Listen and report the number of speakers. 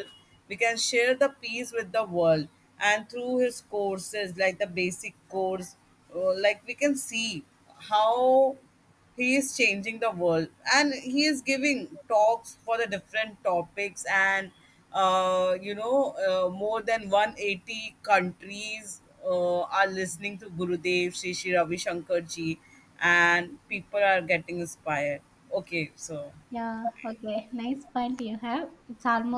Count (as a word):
two